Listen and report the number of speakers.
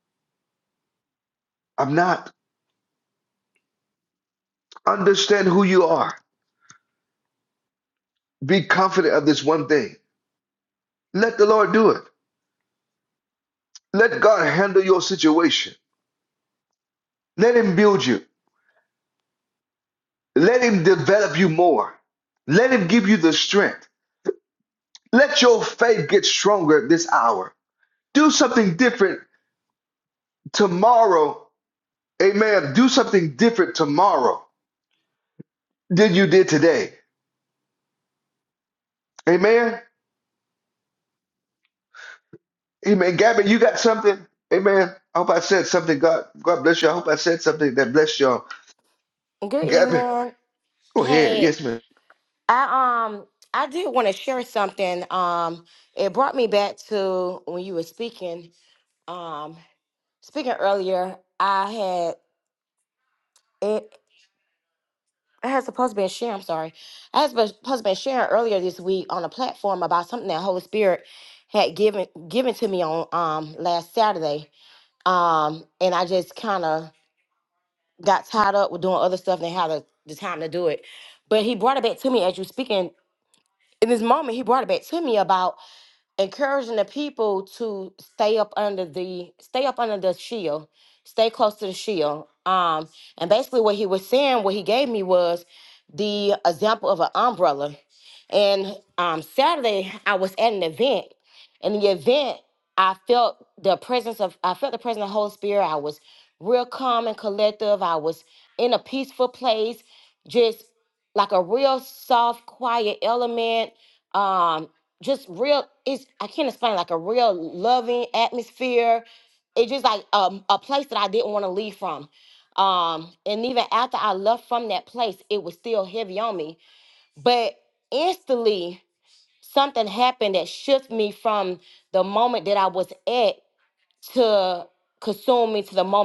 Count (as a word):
two